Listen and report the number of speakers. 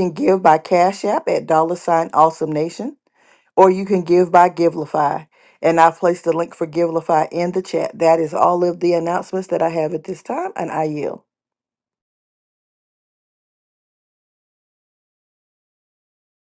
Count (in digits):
1